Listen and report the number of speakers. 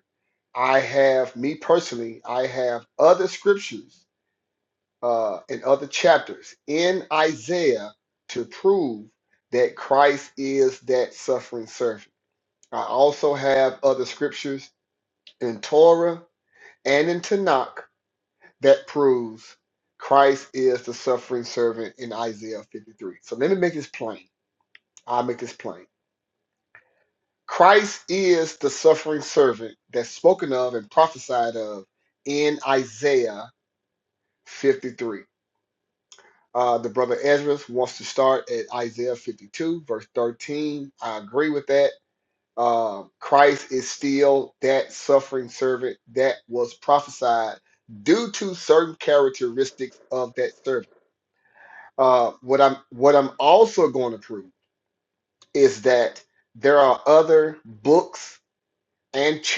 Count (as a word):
one